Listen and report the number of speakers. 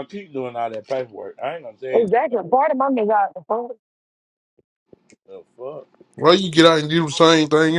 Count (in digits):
3